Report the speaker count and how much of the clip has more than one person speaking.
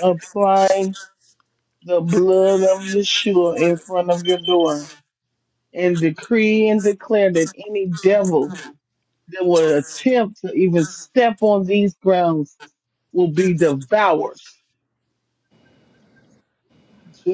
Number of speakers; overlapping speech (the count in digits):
1, no overlap